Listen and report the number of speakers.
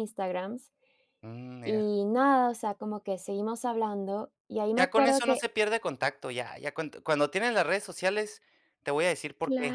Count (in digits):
2